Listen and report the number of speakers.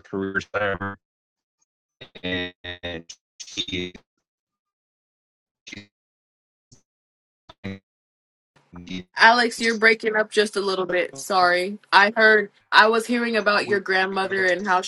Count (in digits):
2